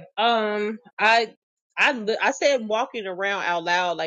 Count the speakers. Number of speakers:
one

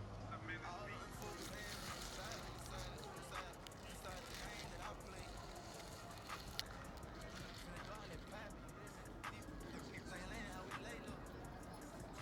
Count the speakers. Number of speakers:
zero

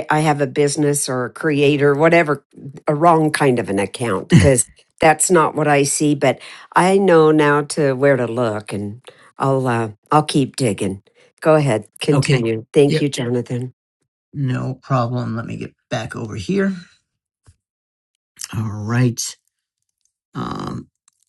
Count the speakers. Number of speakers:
two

